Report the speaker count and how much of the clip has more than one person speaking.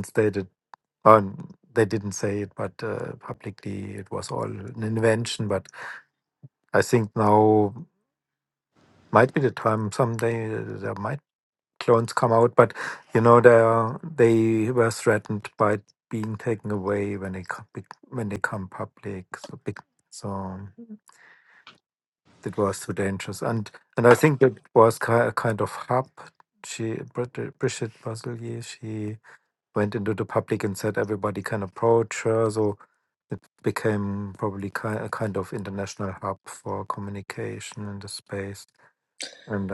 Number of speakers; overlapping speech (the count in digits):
1, no overlap